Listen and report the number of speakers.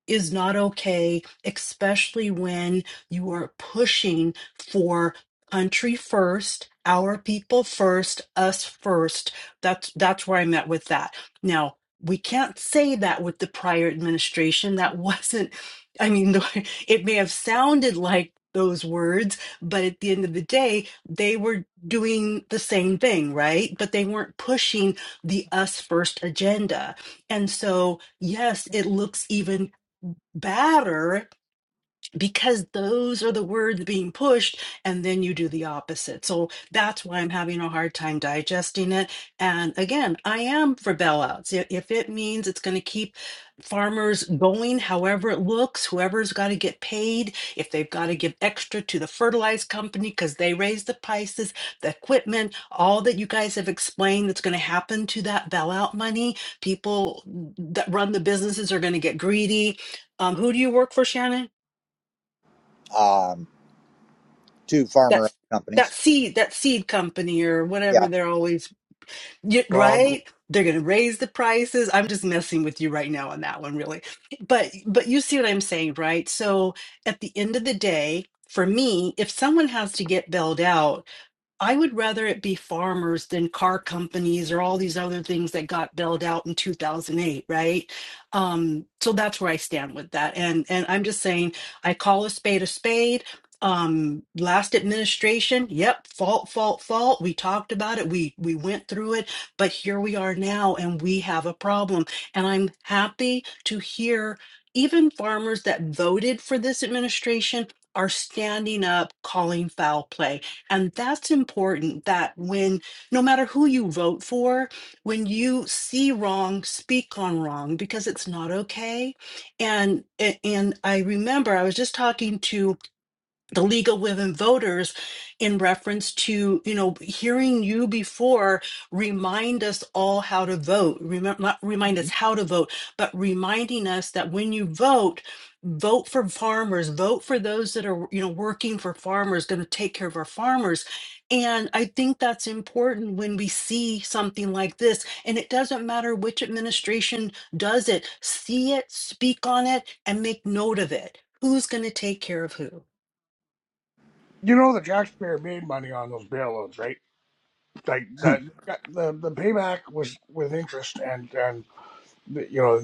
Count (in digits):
3